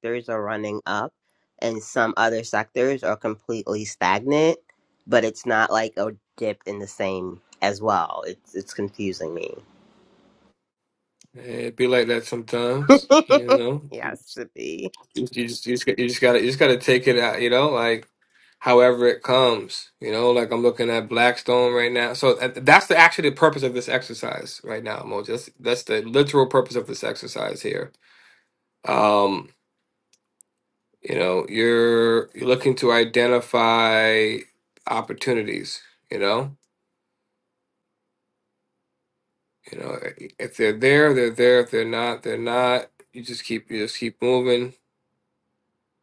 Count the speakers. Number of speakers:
two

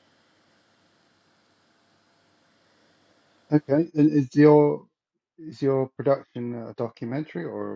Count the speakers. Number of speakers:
one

